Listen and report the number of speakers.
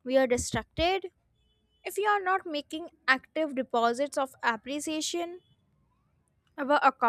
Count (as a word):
one